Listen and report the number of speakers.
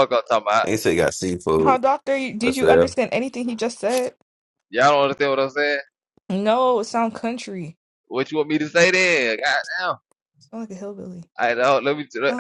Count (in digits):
3